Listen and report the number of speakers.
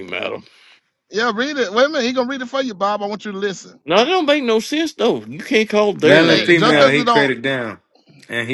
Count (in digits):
3